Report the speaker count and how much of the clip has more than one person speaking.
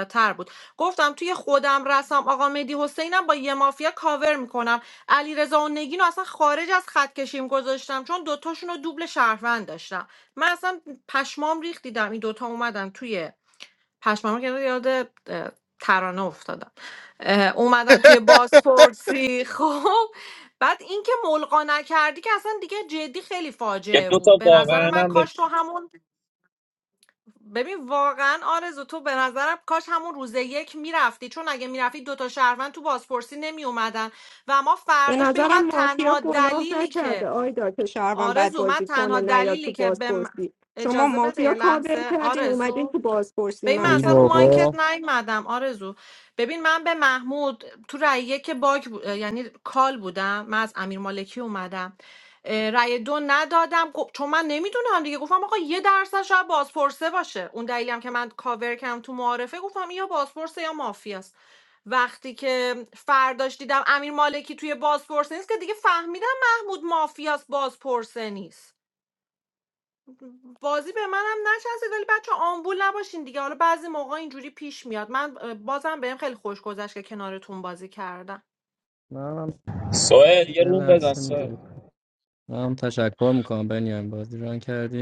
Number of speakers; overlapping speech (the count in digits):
4, about 11%